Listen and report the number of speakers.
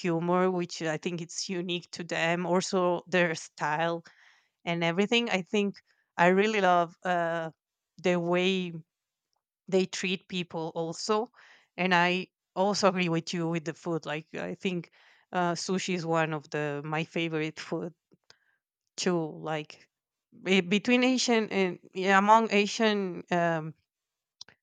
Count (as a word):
one